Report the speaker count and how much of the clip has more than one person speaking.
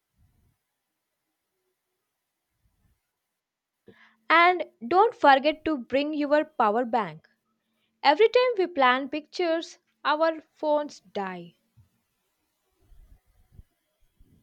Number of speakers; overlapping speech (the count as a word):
one, no overlap